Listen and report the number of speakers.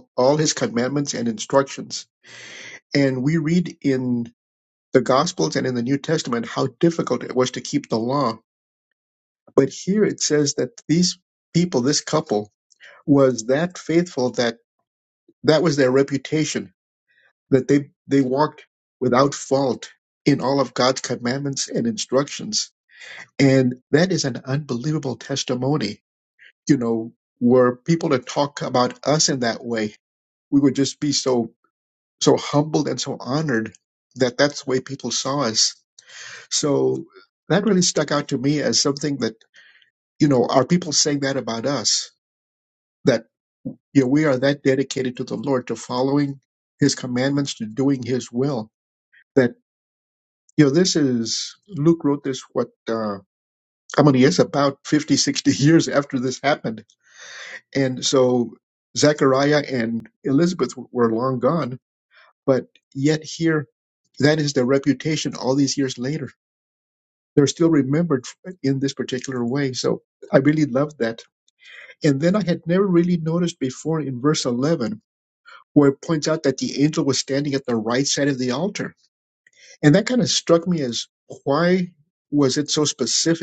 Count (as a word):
one